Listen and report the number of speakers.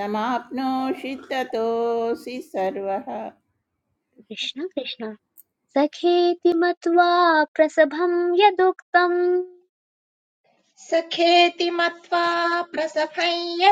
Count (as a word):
three